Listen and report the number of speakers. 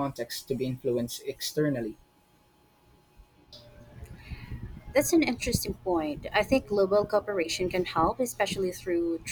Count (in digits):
2